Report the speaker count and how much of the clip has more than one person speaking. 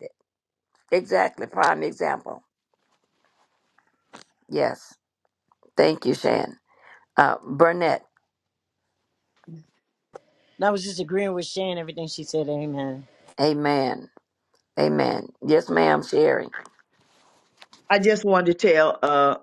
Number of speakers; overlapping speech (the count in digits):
3, no overlap